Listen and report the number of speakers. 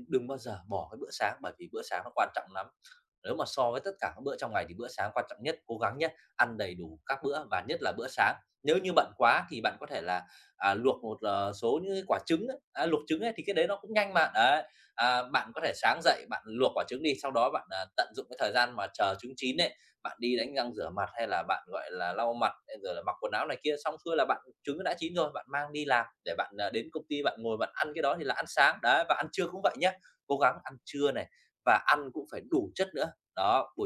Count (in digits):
1